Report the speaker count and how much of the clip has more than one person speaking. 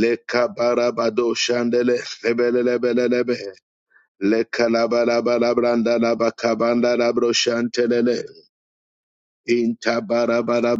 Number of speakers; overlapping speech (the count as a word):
one, no overlap